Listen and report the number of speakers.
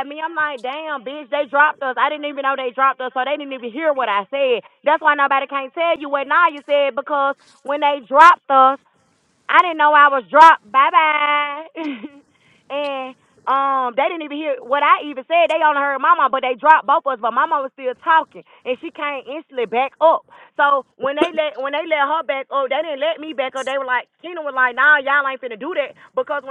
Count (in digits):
1